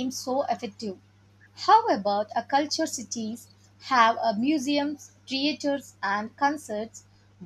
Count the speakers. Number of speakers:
1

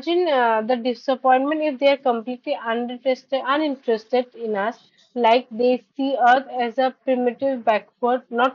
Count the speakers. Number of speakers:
1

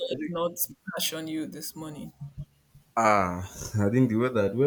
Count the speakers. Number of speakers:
2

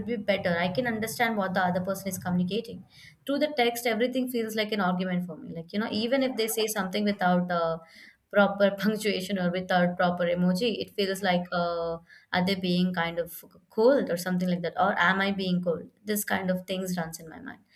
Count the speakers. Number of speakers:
1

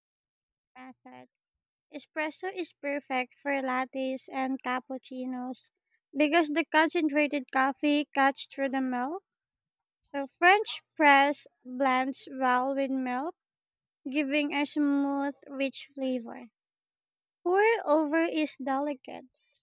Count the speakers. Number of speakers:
1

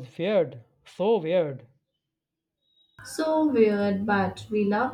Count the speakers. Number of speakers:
2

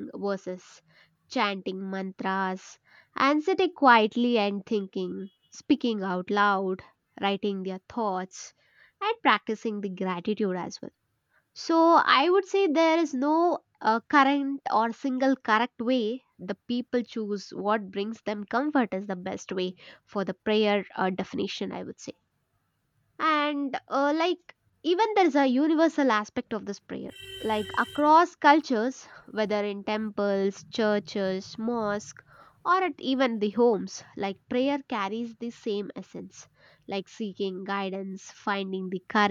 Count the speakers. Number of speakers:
1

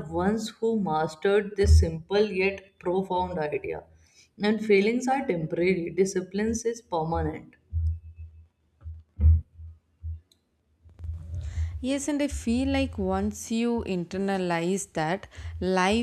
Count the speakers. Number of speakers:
2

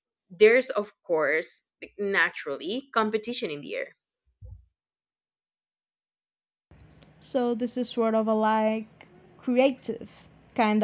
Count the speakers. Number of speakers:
2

